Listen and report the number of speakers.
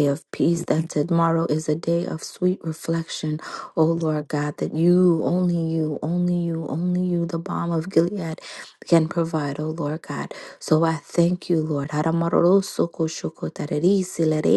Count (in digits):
1